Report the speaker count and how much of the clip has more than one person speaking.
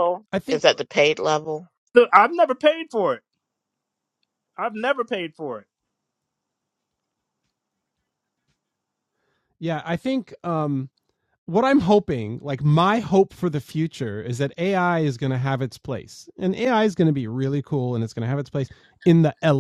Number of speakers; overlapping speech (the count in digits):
3, about 1%